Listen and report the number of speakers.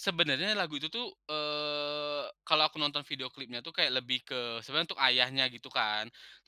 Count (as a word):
one